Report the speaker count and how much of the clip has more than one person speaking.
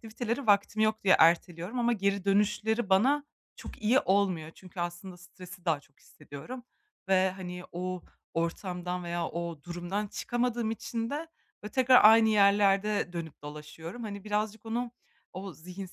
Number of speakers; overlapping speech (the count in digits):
1, no overlap